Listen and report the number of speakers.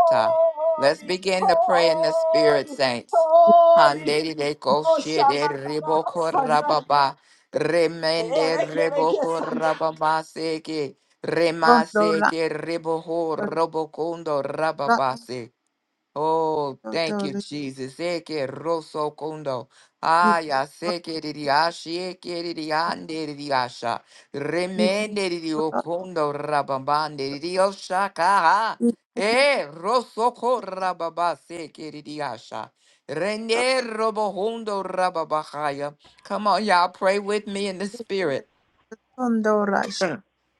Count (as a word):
three